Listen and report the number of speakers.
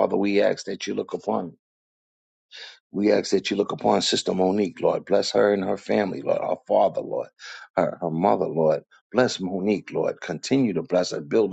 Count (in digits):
1